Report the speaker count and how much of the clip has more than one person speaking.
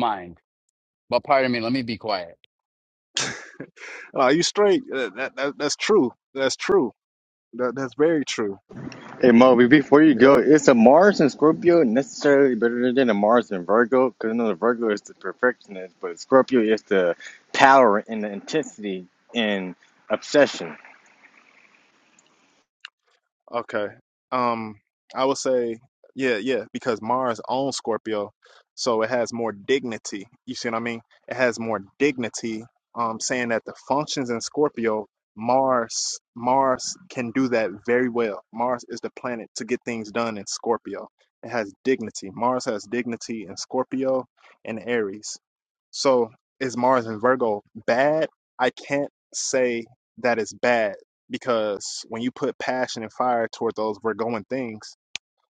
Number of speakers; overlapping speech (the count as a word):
three, about 1%